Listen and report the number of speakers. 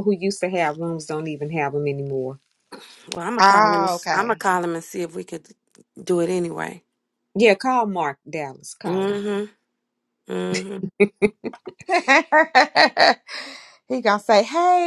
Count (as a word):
three